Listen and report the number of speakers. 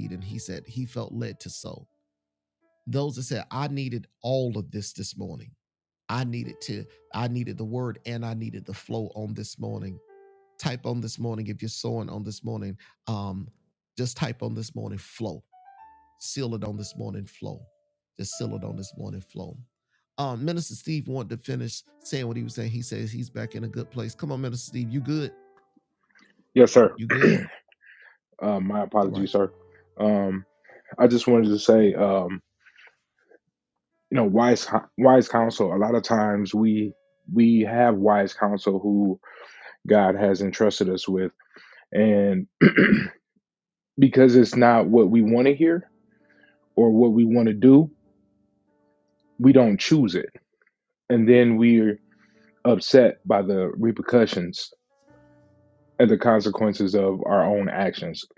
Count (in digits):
2